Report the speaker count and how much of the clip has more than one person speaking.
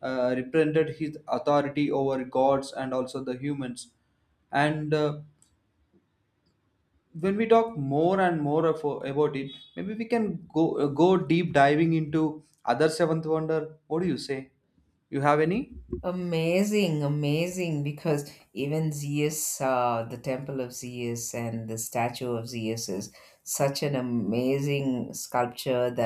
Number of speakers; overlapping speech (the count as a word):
two, no overlap